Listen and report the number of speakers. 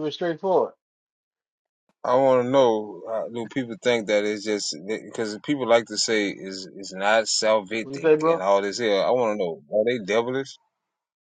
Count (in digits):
2